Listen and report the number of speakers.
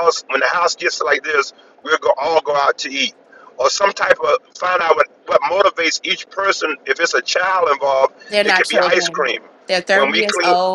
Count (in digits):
2